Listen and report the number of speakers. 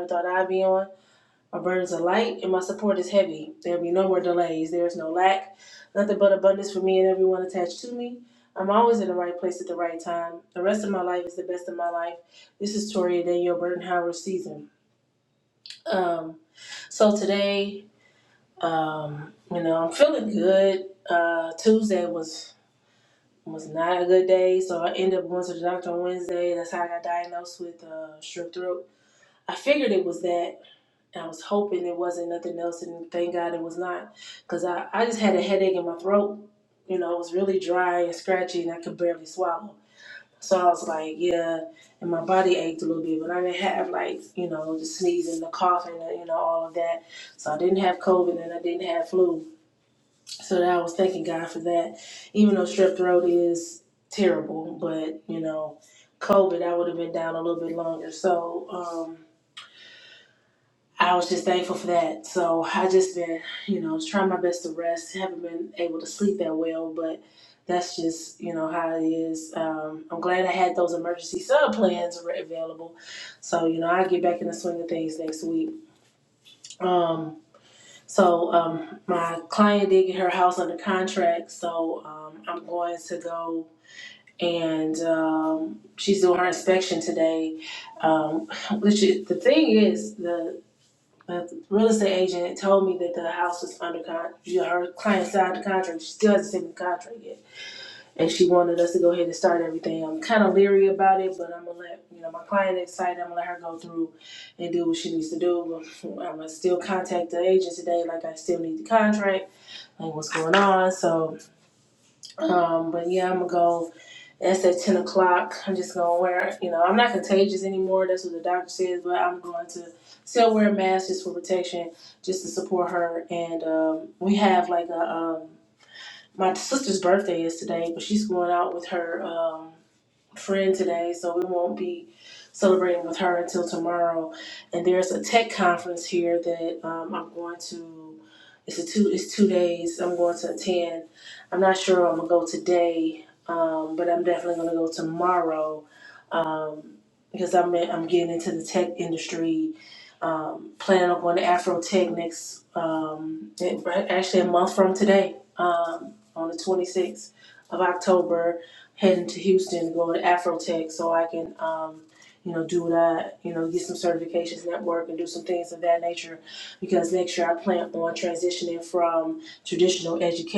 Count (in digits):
1